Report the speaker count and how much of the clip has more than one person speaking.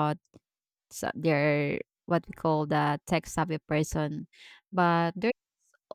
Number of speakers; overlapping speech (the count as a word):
one, no overlap